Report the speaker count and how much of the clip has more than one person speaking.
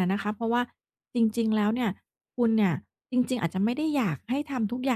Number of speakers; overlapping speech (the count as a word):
one, no overlap